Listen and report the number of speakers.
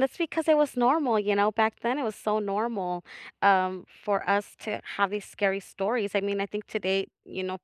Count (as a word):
one